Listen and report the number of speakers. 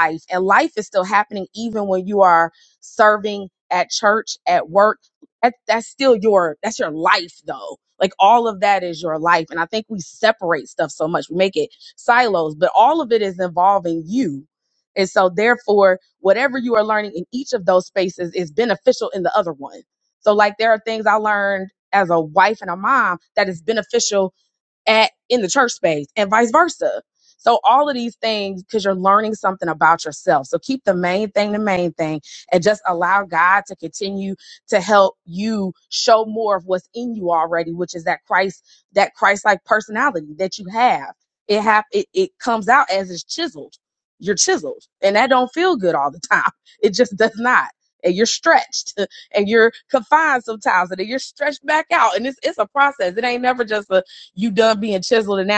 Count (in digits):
1